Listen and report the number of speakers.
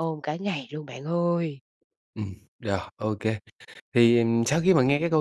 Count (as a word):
two